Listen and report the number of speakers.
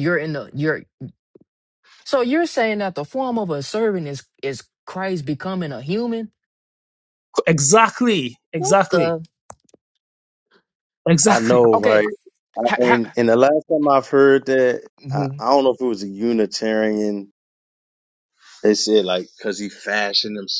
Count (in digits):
3